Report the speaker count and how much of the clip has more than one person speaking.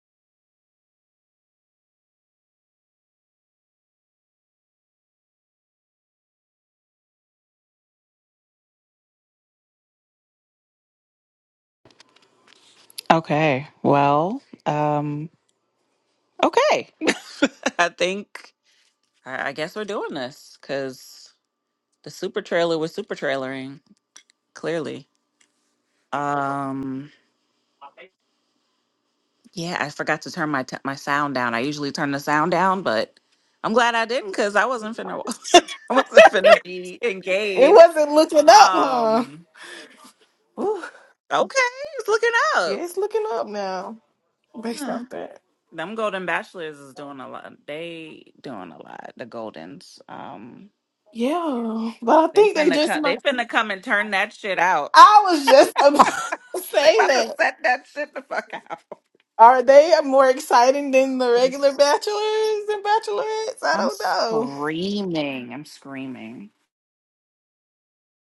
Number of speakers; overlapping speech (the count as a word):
two, about 5%